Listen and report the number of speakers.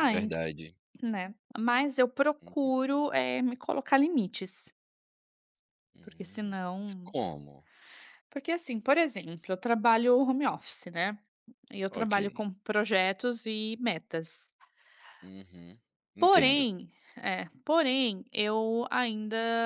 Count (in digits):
2